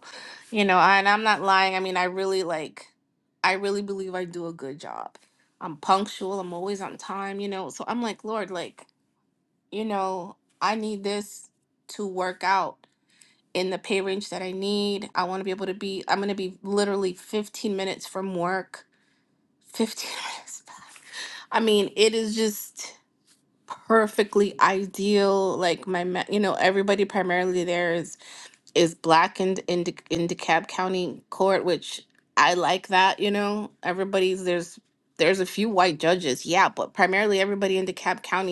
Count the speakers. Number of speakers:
1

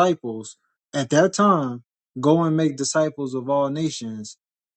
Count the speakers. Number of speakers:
1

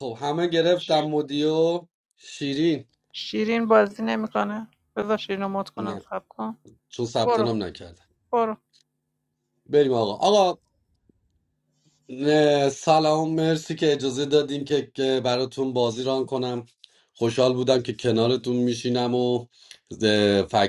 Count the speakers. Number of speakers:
2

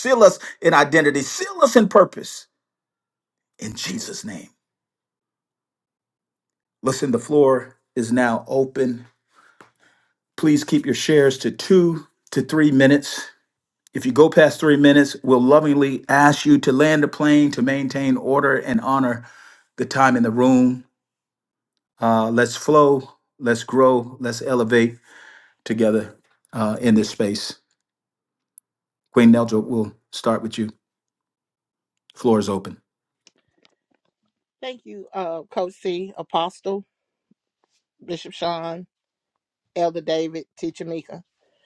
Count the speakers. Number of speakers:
2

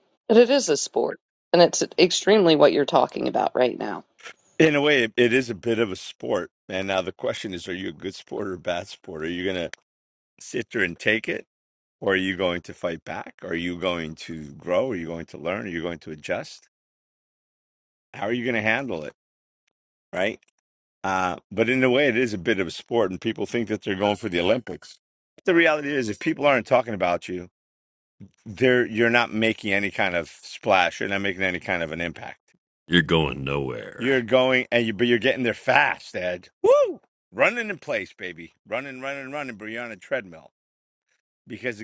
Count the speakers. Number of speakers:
3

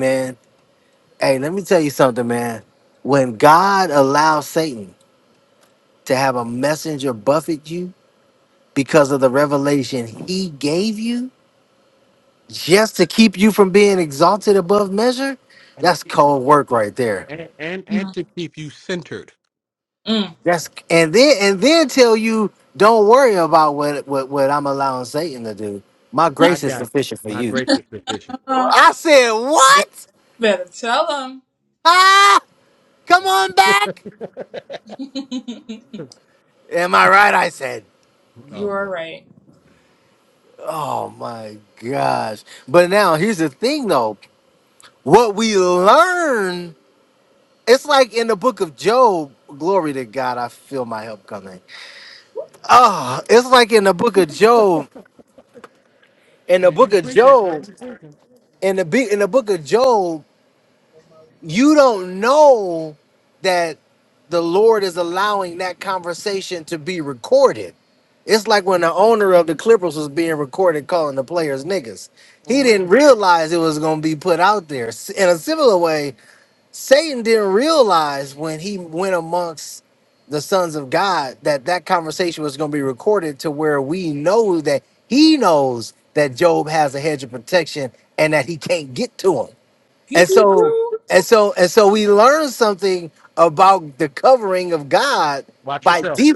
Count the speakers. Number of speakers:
3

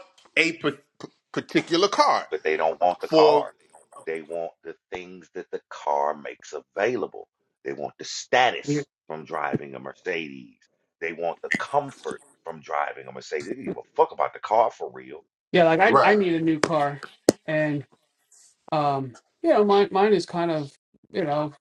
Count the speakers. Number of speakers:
3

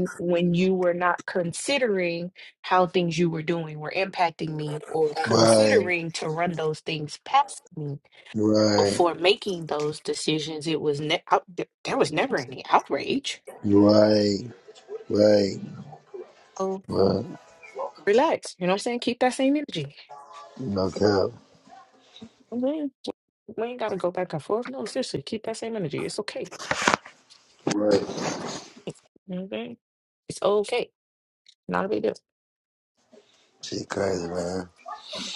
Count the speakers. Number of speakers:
2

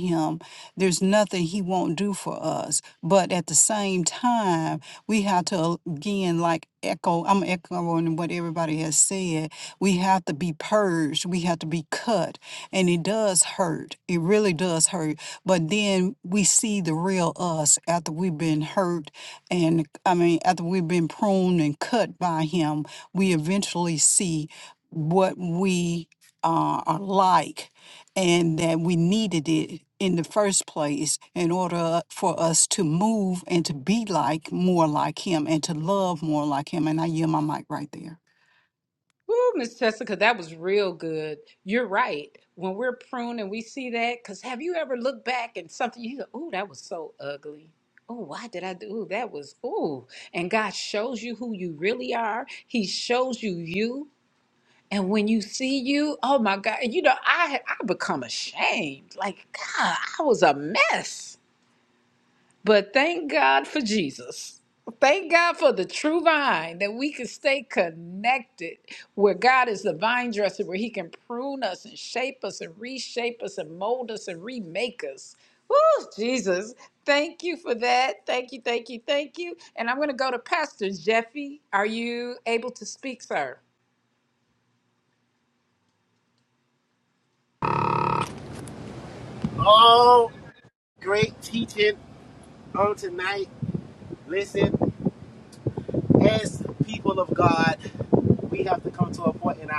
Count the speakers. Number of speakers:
3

